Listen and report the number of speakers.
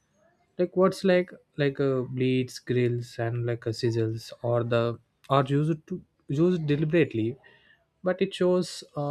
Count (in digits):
1